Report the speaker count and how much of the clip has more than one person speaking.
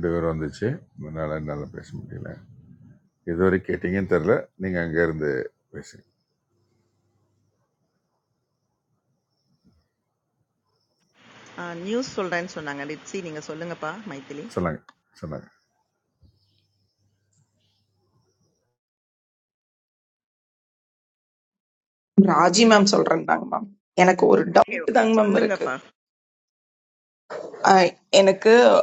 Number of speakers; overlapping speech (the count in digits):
3, about 4%